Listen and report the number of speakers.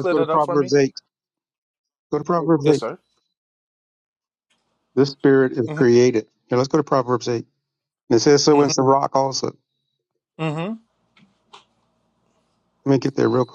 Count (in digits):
2